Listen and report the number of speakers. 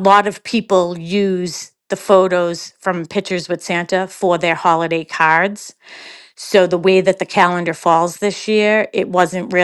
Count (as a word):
one